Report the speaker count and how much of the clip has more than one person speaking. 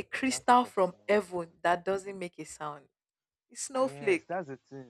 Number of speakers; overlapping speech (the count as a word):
two, about 20%